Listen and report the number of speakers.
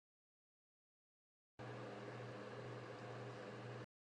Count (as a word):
zero